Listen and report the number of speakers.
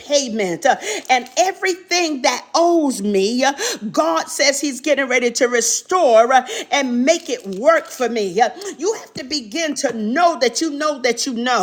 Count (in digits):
1